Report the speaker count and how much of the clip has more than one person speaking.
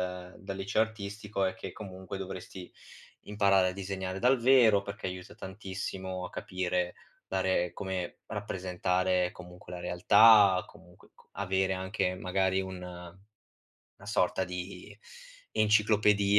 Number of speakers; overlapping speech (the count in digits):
1, no overlap